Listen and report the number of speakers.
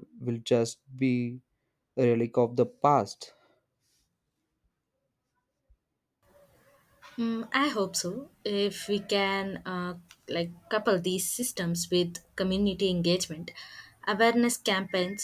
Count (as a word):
two